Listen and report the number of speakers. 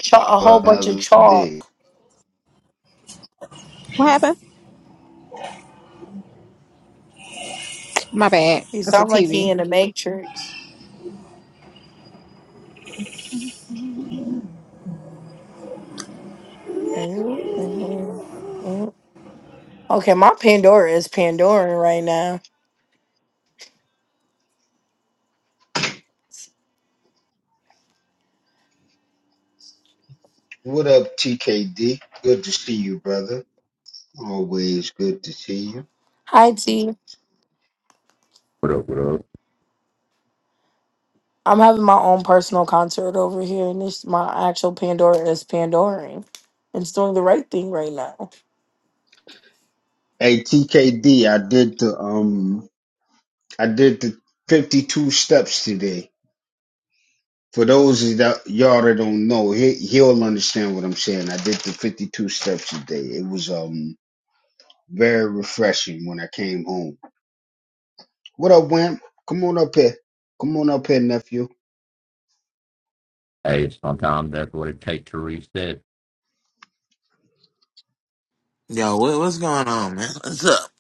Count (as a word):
five